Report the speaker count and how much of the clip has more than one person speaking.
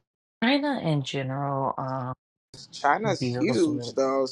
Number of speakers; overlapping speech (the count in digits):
2, about 17%